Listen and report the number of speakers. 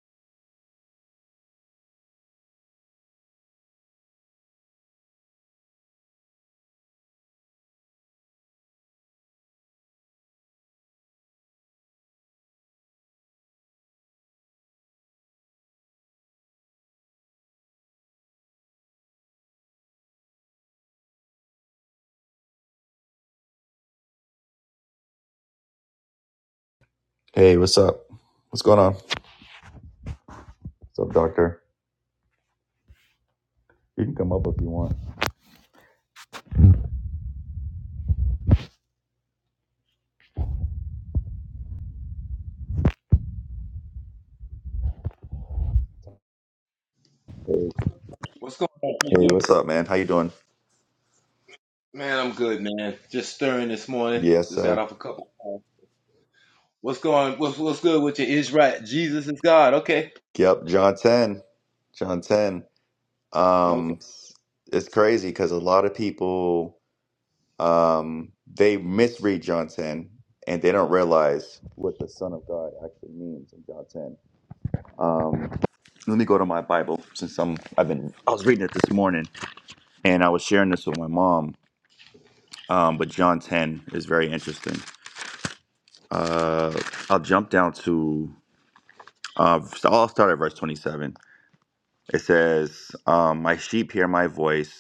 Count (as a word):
two